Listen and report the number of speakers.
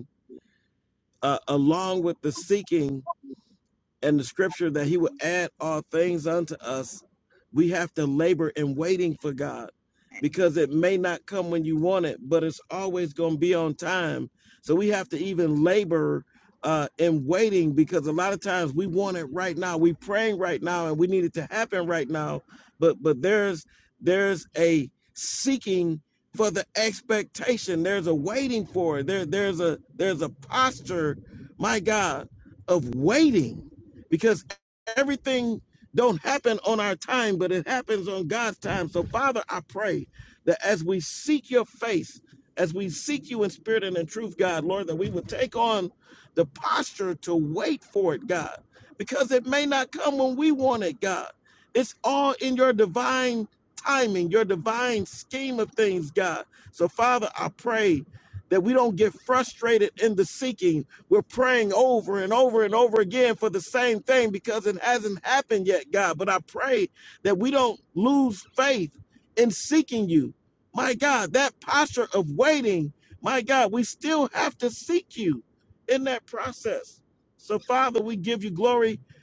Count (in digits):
1